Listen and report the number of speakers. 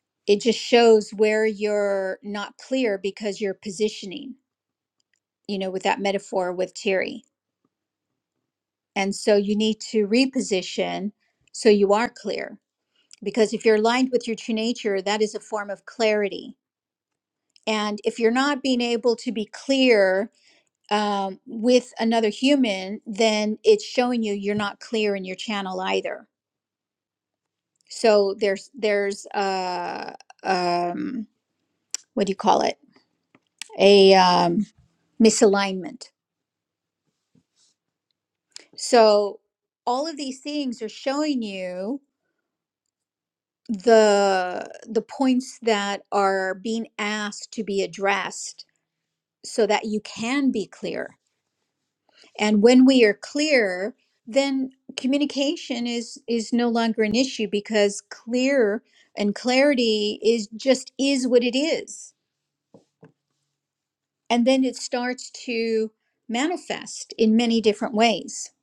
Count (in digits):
1